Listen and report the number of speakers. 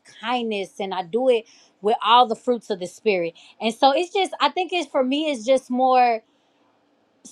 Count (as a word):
one